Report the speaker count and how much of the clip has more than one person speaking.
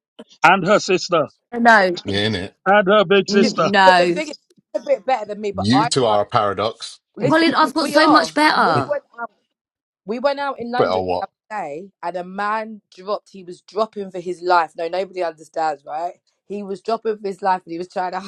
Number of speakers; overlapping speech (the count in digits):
4, about 19%